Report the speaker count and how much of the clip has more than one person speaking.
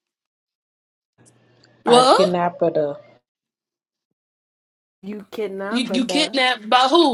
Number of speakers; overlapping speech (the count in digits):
3, about 15%